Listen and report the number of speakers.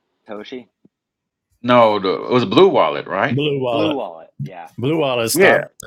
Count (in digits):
3